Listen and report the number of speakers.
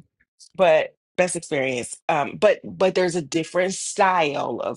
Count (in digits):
1